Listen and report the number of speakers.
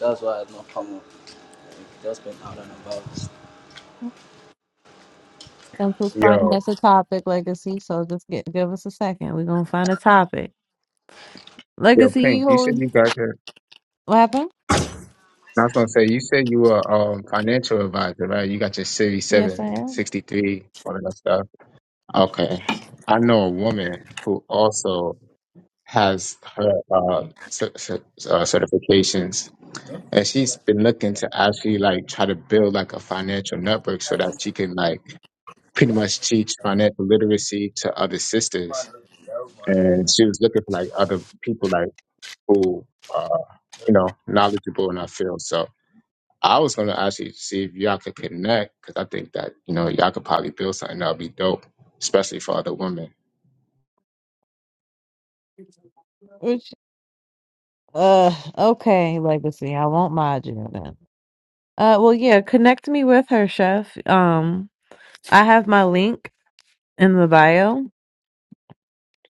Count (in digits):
3